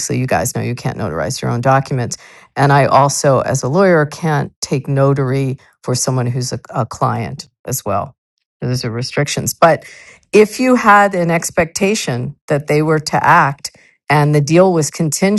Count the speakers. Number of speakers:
one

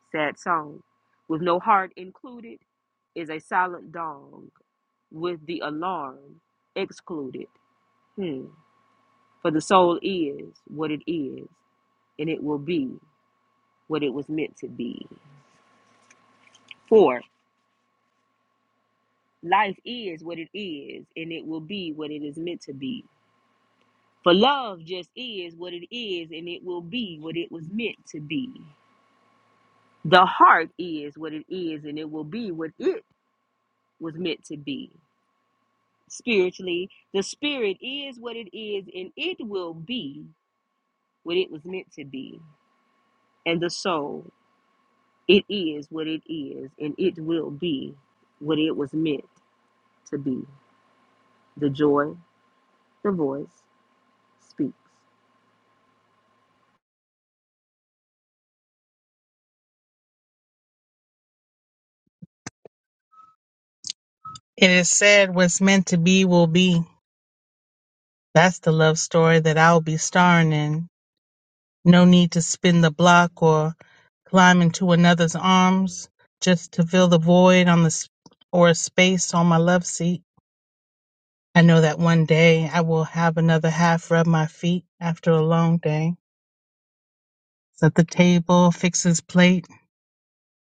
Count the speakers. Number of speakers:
two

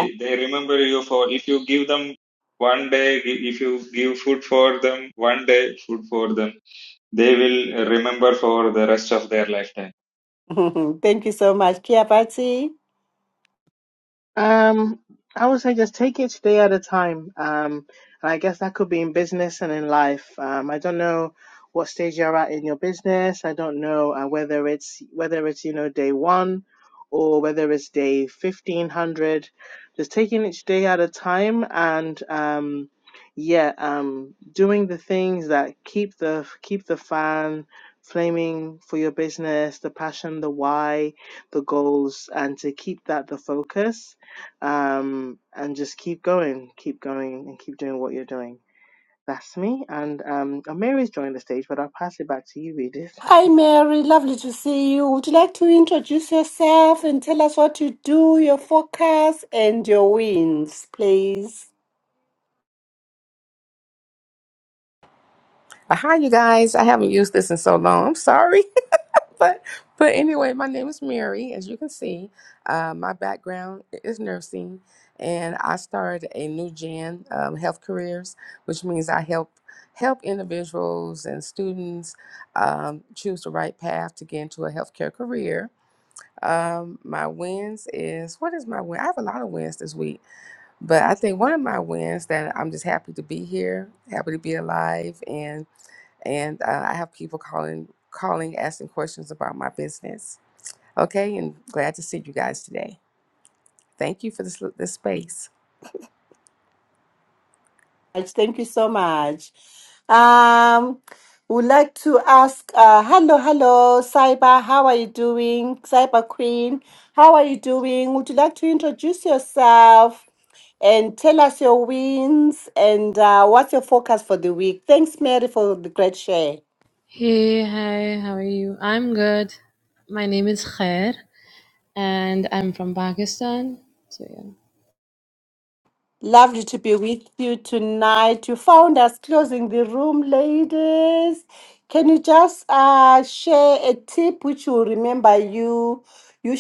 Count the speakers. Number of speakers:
five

